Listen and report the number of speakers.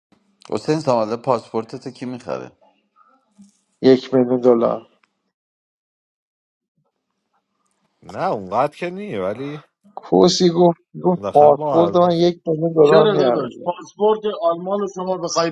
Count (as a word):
four